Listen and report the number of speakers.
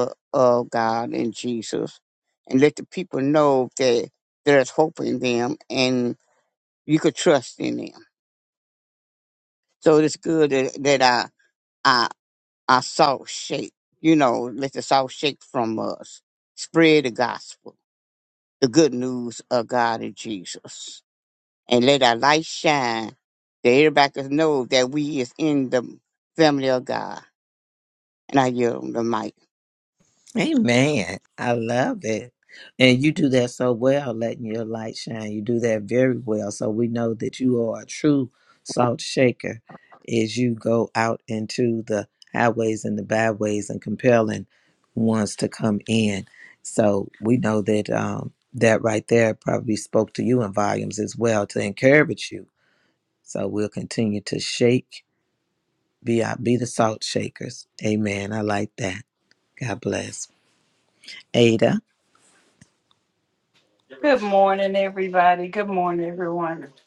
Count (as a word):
three